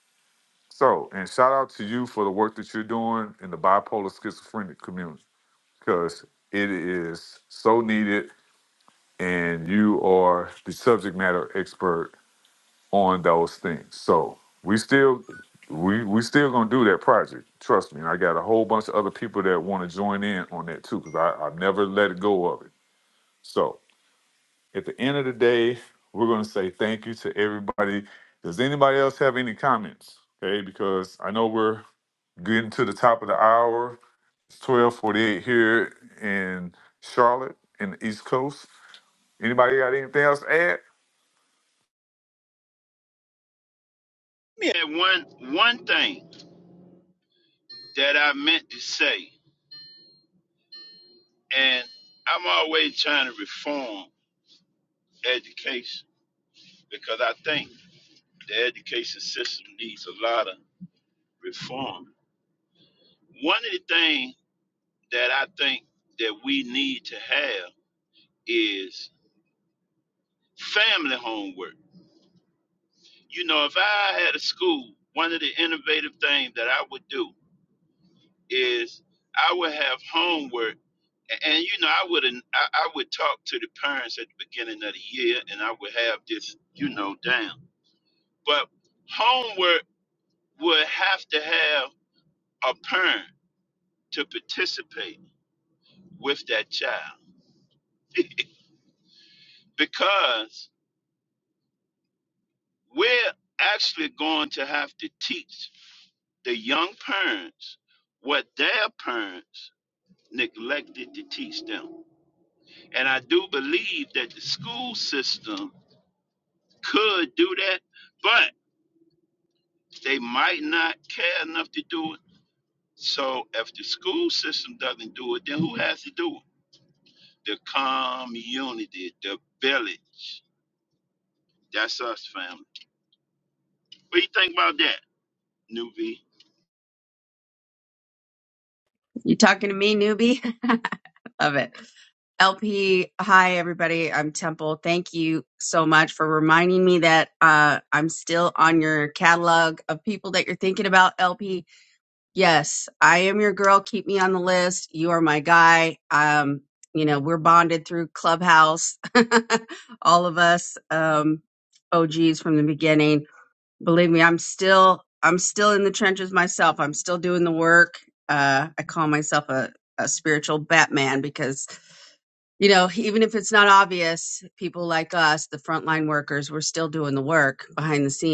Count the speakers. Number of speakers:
3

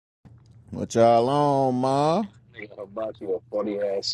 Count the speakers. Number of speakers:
2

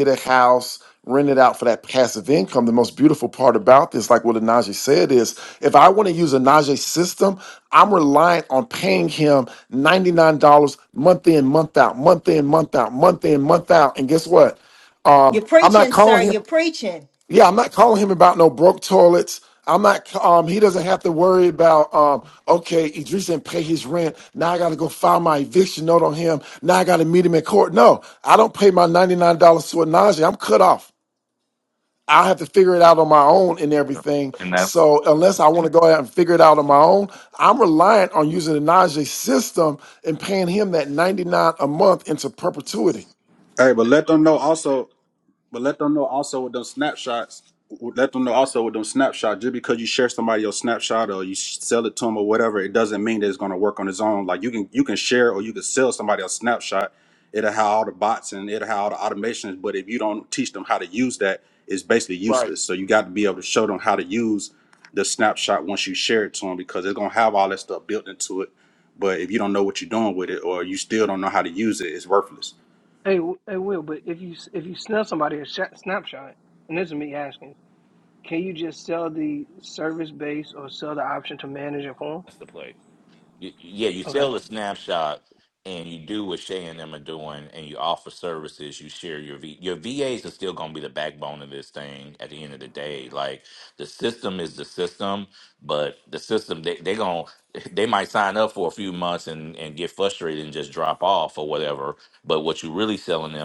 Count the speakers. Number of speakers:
5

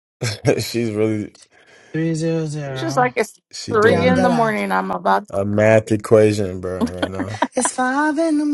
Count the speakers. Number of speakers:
3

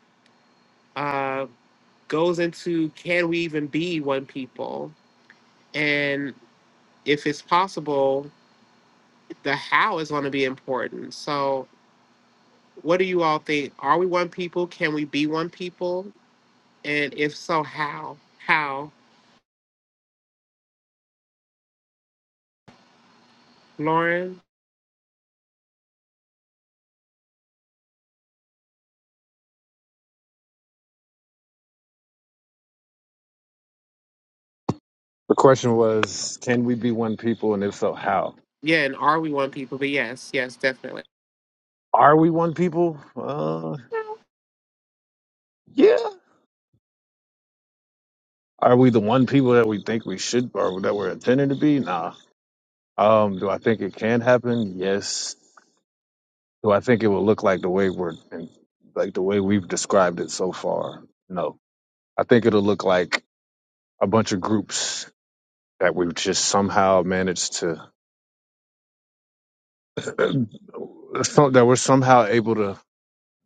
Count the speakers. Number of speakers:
2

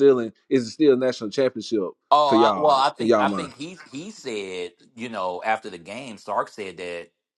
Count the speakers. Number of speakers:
2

